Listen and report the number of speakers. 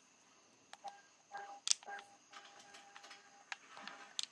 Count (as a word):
zero